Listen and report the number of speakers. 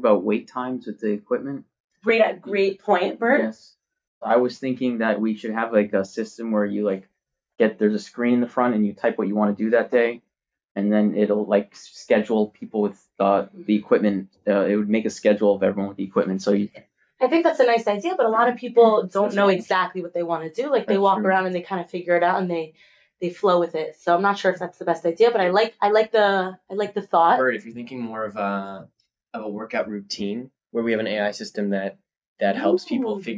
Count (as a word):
three